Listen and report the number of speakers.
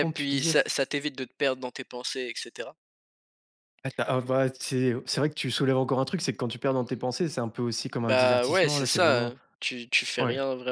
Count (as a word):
two